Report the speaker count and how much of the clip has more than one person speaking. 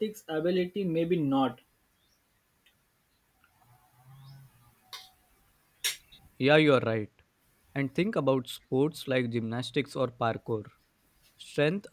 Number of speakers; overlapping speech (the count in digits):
2, no overlap